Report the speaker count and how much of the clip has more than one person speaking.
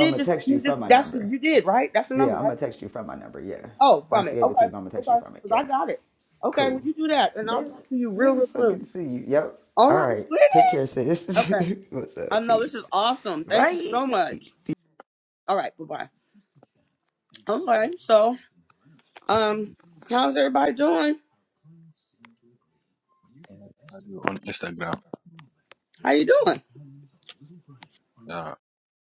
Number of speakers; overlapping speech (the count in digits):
3, about 25%